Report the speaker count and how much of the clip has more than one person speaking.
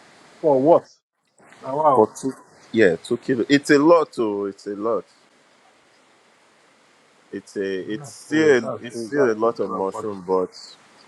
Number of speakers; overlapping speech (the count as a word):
two, about 19%